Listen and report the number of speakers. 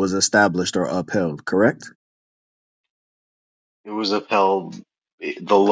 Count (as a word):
two